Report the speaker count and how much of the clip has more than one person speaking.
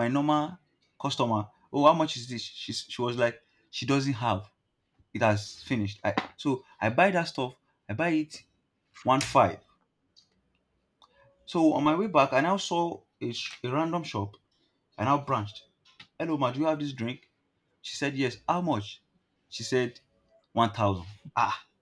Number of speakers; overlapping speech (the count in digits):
1, no overlap